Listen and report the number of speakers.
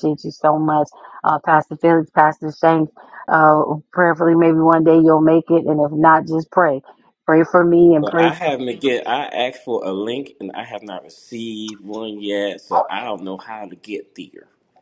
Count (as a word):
two